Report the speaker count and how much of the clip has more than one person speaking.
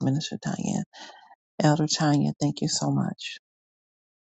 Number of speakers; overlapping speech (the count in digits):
1, no overlap